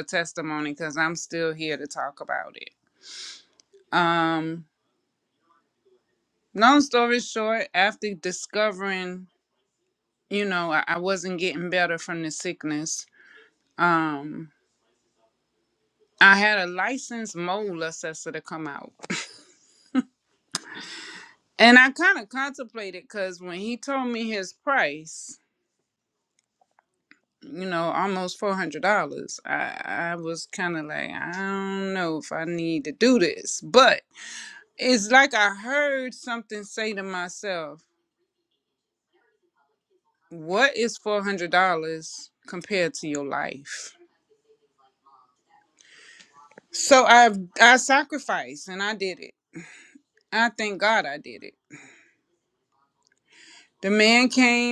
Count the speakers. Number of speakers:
1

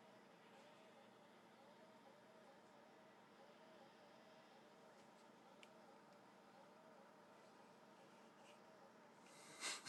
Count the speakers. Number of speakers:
0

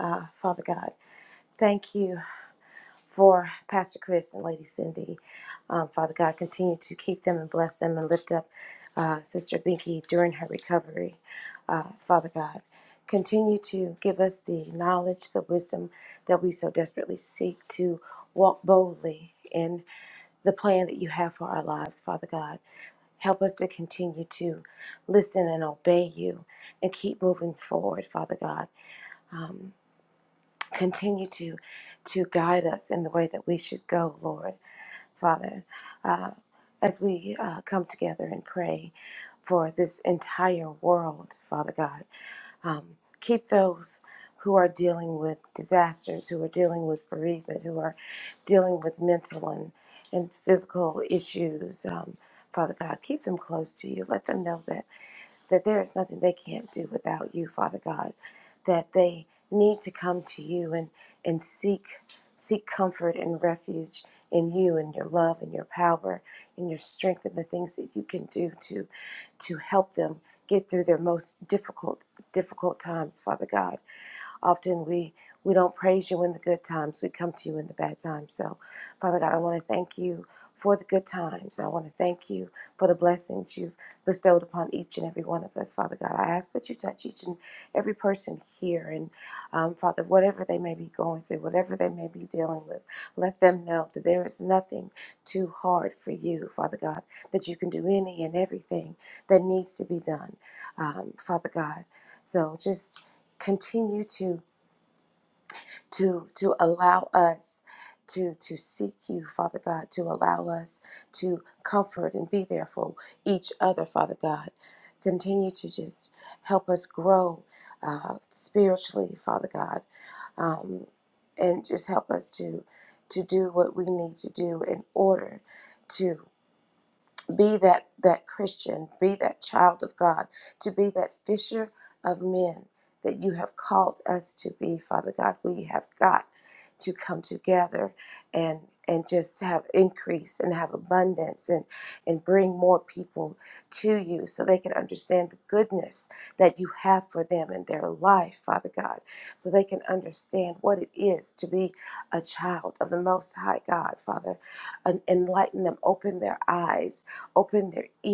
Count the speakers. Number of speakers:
1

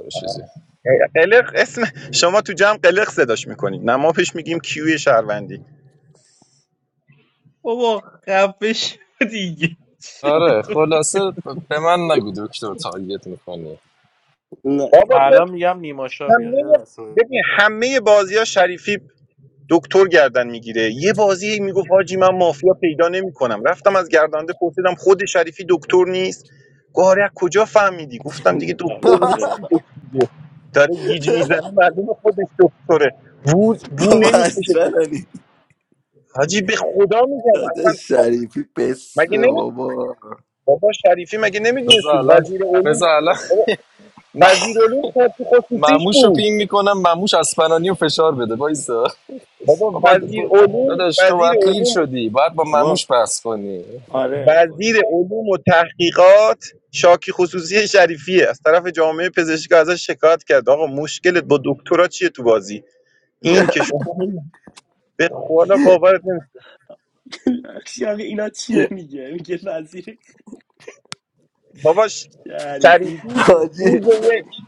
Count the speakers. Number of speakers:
6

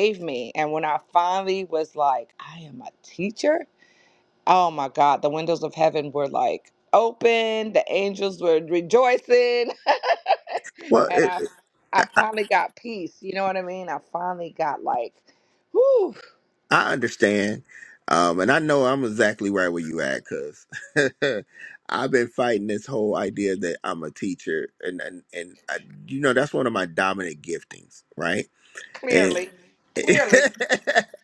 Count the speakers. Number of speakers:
2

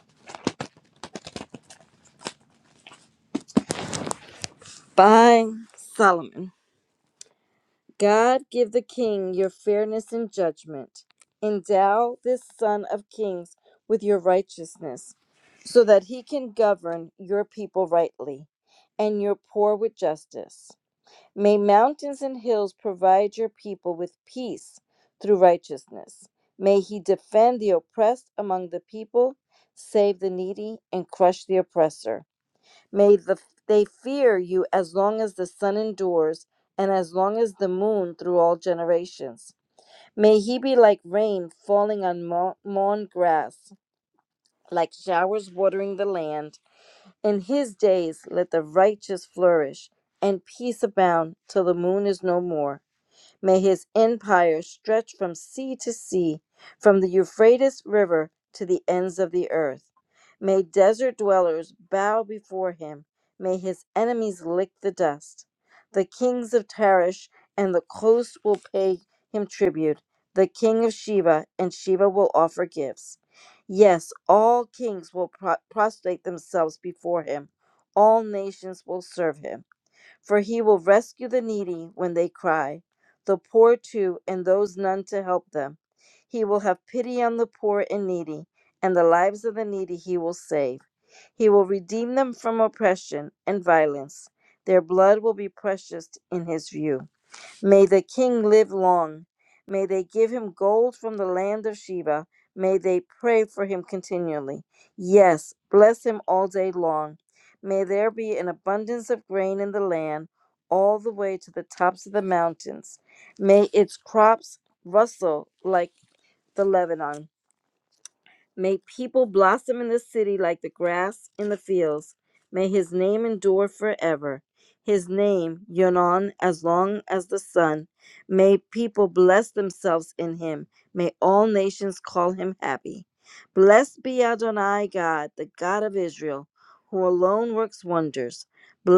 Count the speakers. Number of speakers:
1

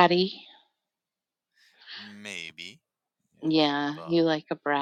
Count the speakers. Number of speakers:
2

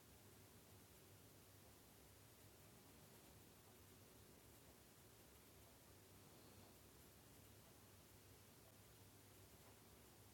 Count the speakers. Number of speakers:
0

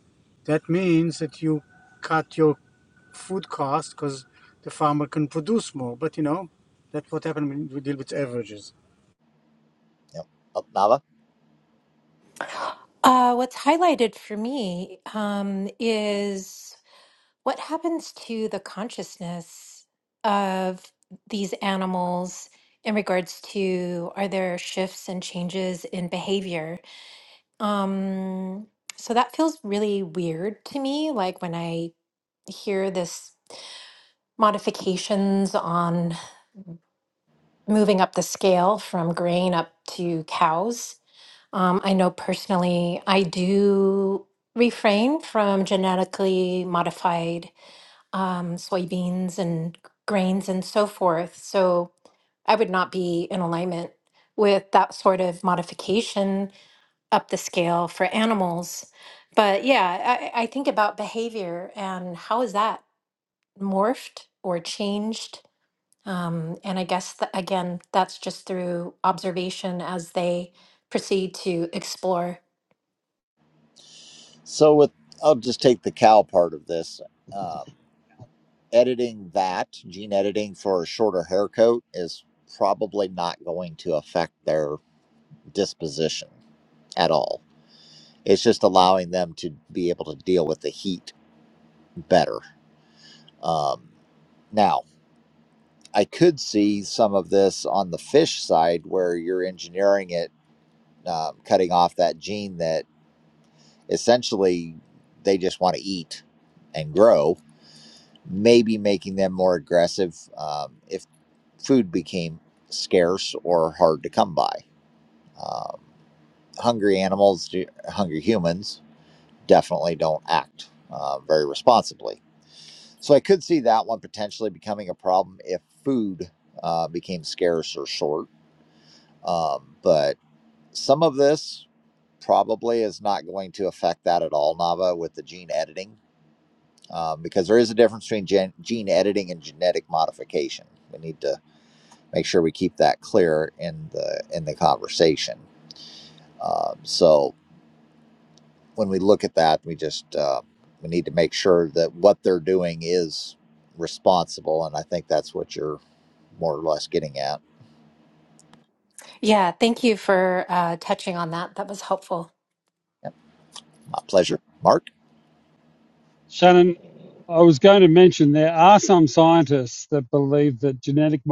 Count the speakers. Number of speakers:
4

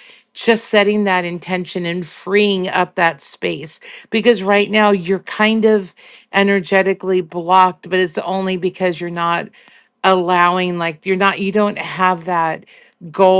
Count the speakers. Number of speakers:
1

